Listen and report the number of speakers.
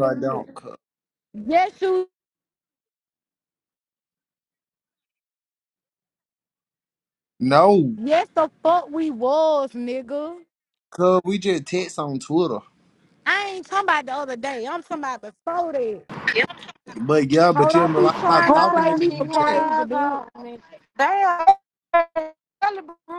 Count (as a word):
three